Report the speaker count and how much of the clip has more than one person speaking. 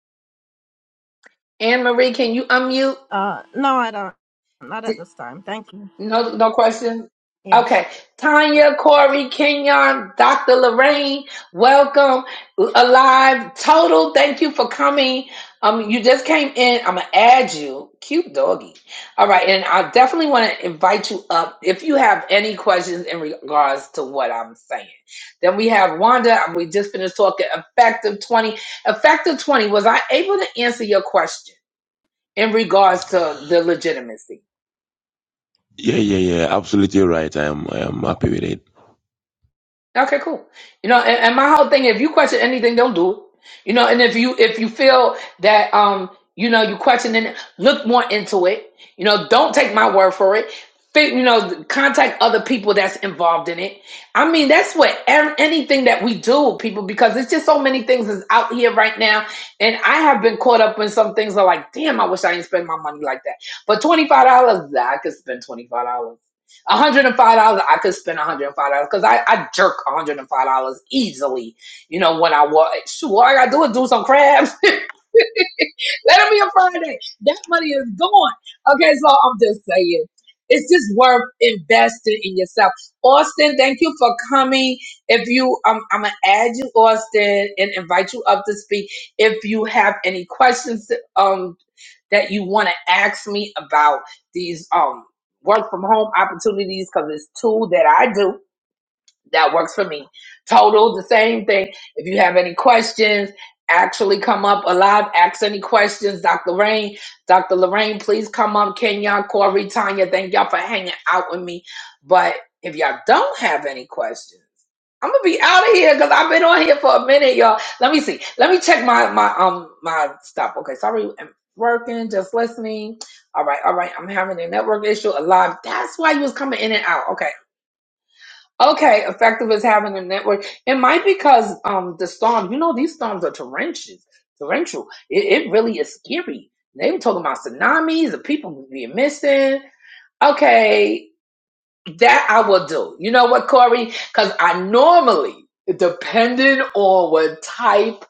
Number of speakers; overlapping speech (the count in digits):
3, under 1%